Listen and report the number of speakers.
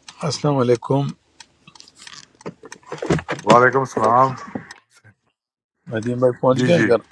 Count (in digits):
2